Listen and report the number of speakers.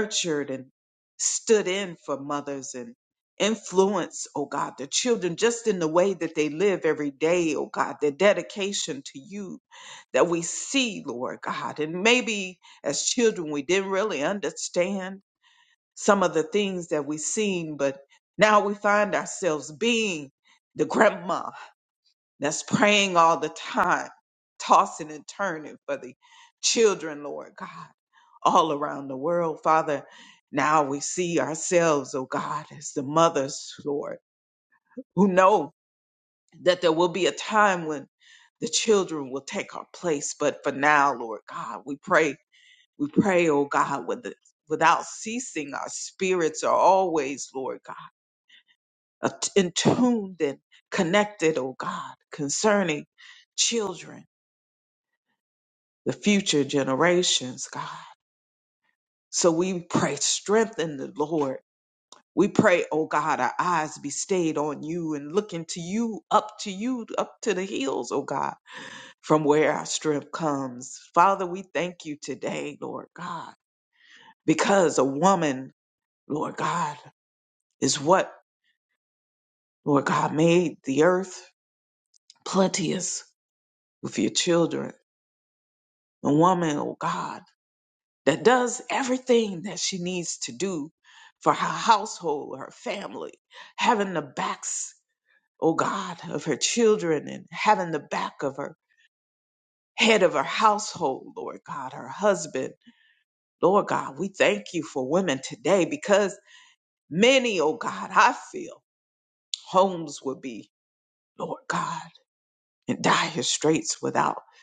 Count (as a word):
one